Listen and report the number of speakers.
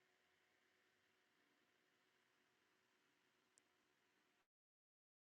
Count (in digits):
0